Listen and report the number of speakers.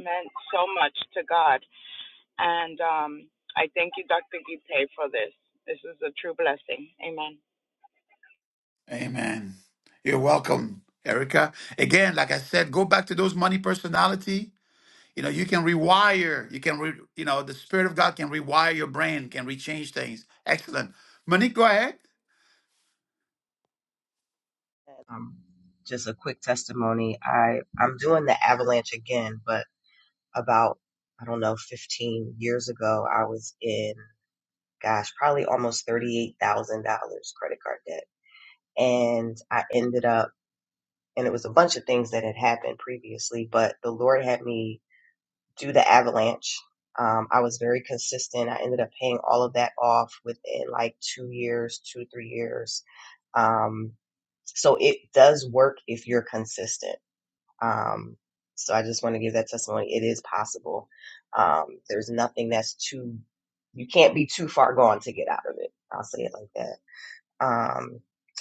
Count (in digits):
3